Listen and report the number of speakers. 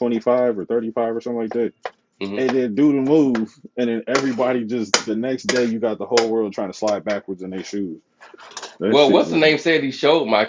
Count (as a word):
two